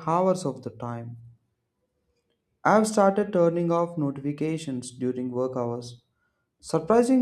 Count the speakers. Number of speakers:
one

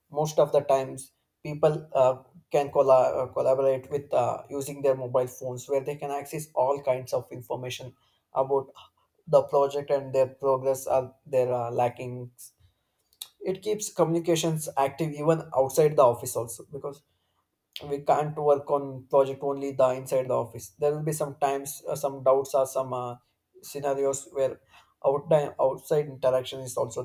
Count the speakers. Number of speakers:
one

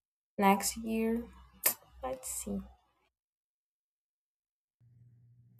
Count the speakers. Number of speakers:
one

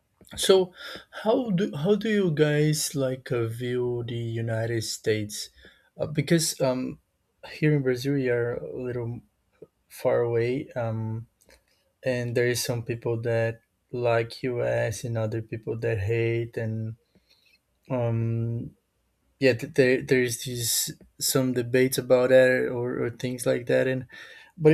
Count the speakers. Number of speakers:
one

